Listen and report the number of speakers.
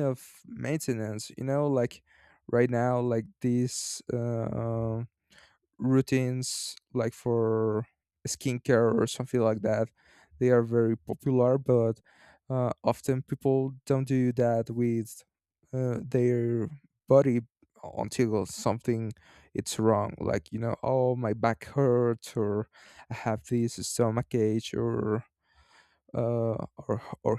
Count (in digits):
1